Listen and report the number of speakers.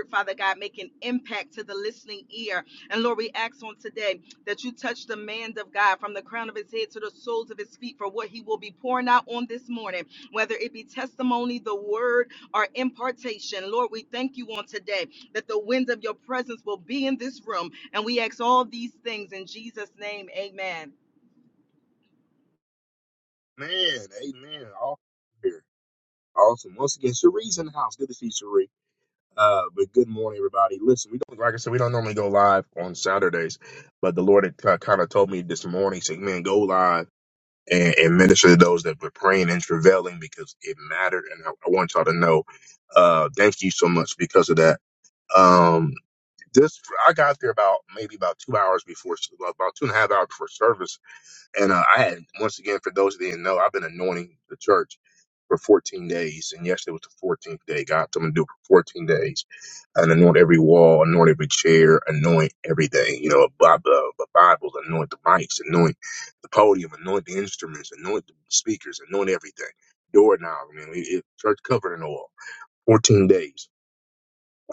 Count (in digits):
2